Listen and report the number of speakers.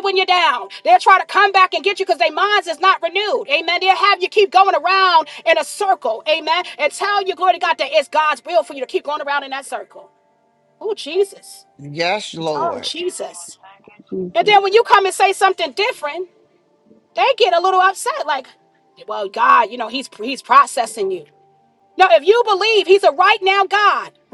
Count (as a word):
three